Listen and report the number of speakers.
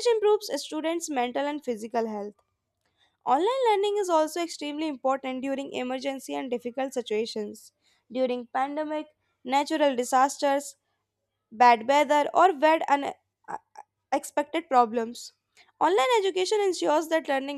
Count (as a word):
one